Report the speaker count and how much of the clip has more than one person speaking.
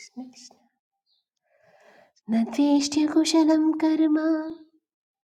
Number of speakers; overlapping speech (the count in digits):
1, no overlap